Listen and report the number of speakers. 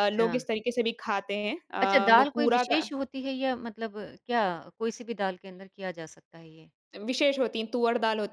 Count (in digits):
2